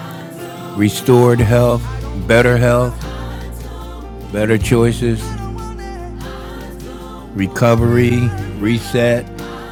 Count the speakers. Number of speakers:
1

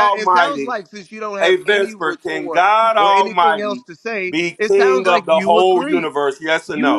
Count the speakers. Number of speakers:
2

